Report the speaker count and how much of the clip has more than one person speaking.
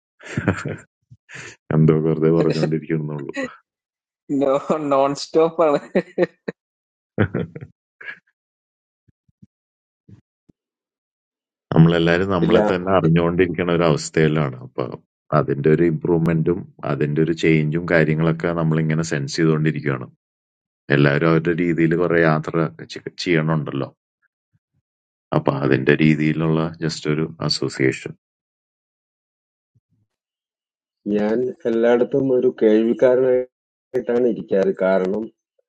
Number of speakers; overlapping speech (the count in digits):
3, about 2%